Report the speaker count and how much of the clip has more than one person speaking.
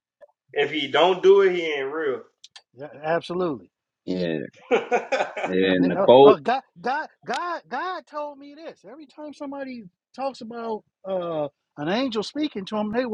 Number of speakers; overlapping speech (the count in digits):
3, about 4%